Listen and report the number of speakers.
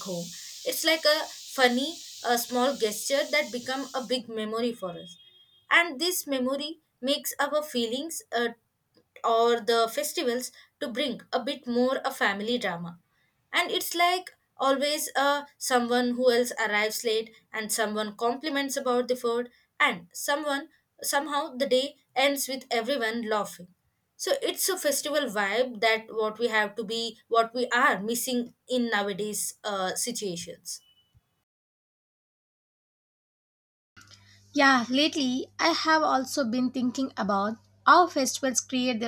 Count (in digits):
2